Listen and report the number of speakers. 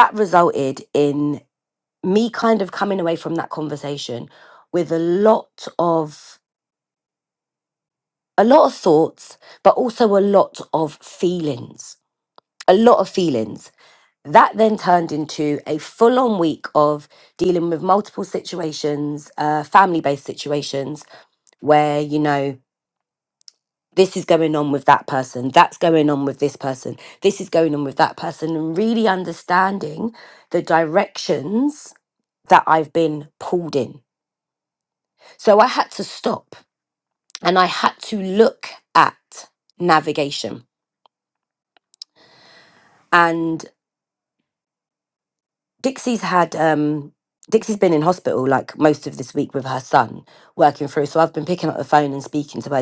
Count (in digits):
1